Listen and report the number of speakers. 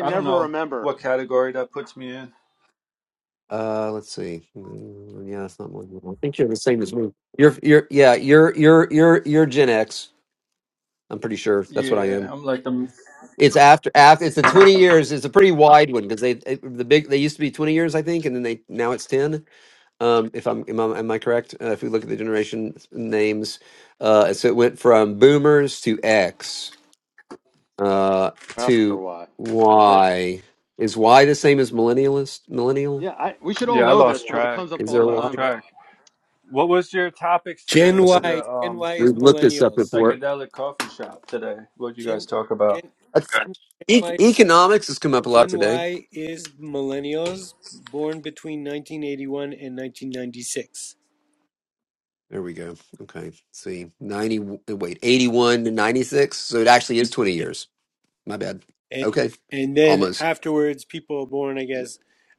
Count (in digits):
4